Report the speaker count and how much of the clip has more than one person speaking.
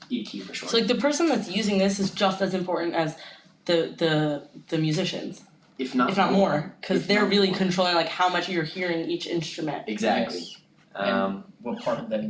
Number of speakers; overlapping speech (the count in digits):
3, about 15%